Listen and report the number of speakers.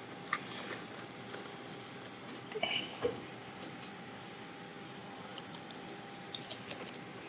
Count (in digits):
0